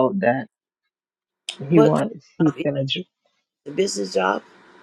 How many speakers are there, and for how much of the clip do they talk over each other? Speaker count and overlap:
two, about 12%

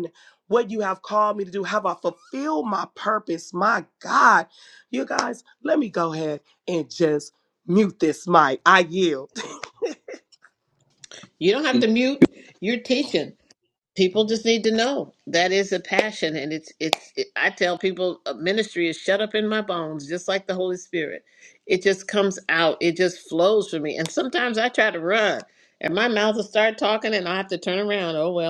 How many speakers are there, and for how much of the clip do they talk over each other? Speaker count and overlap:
two, no overlap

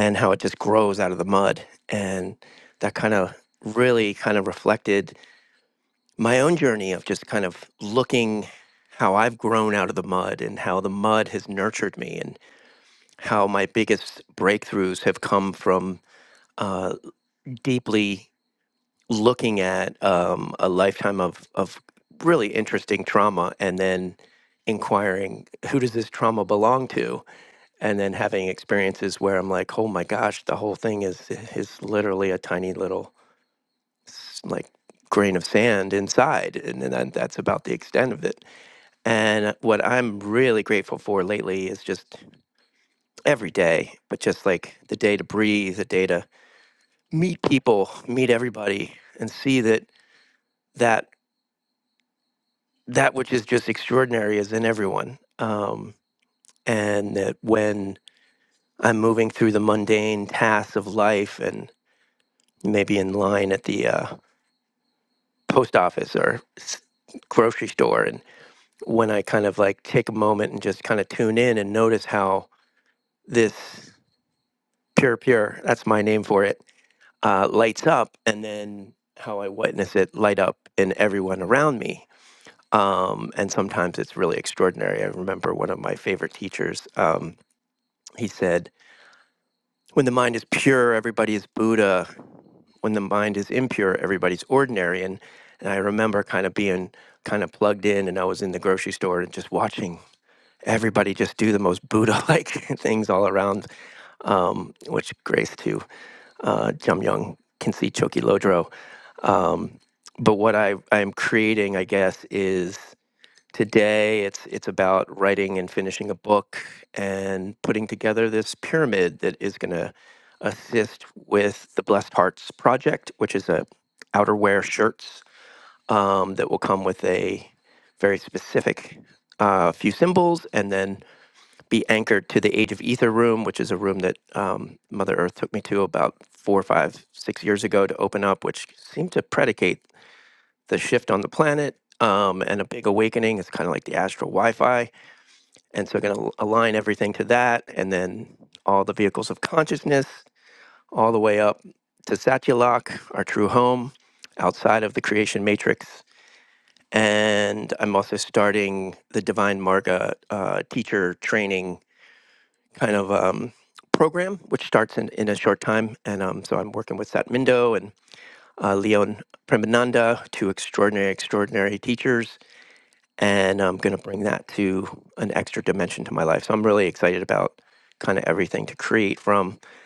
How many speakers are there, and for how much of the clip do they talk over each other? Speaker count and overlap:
one, no overlap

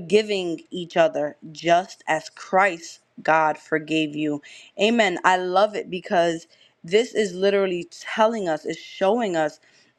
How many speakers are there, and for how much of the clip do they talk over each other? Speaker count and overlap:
one, no overlap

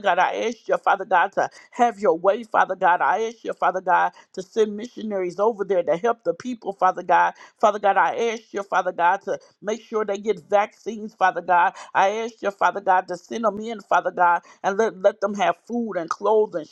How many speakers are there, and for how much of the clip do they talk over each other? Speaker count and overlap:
one, no overlap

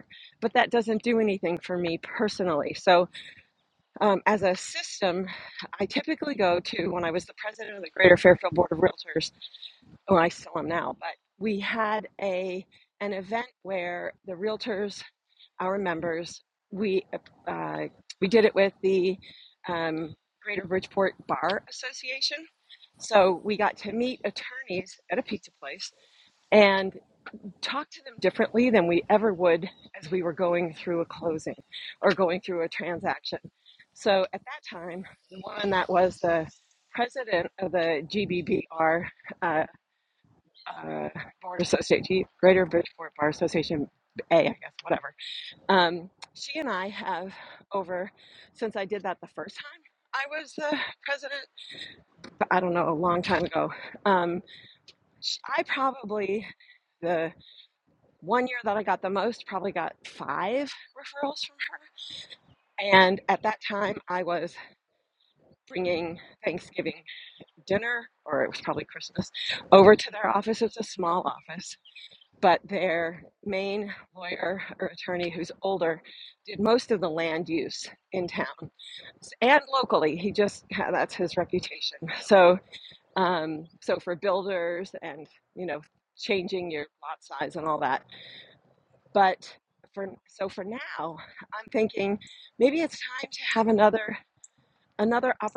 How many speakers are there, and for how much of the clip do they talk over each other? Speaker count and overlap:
one, no overlap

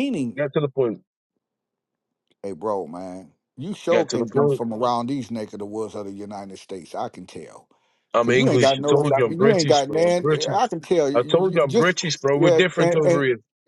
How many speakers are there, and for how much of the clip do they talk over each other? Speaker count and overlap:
two, about 34%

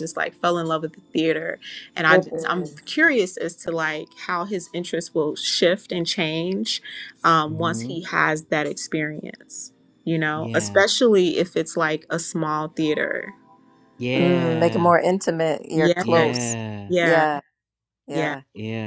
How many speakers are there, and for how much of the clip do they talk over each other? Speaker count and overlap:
three, about 19%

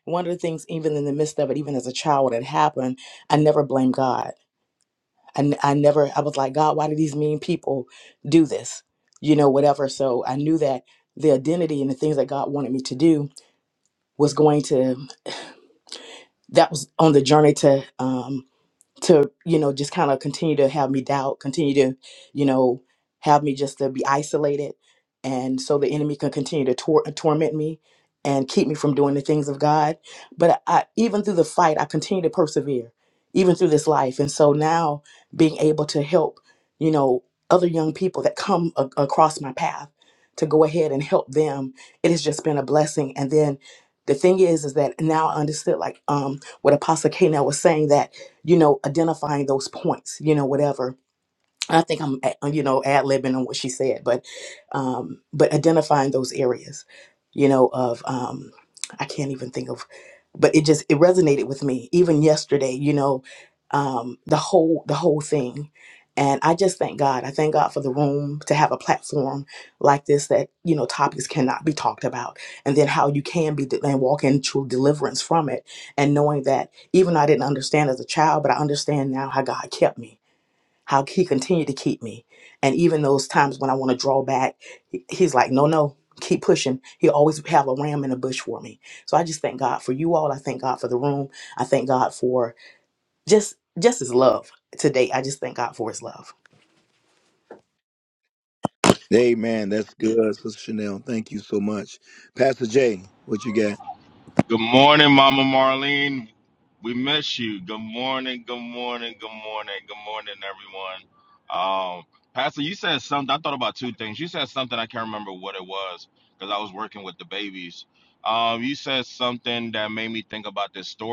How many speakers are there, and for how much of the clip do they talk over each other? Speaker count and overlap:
three, no overlap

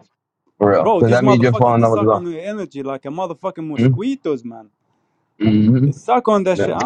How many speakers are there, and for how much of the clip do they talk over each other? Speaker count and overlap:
two, about 27%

